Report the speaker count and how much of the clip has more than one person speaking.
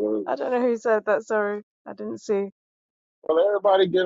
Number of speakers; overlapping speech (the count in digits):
2, about 2%